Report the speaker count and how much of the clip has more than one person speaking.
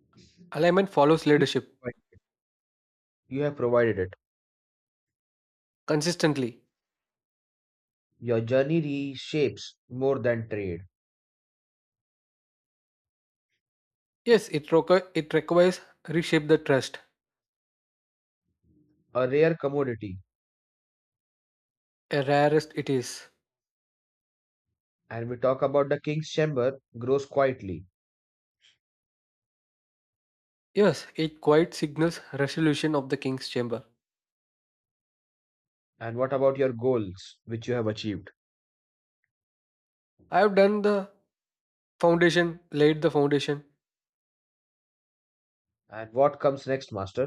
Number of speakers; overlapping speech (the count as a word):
two, under 1%